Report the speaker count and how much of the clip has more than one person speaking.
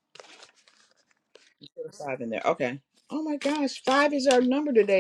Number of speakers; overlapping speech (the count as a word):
one, no overlap